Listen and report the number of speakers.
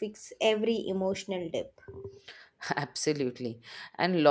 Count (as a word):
two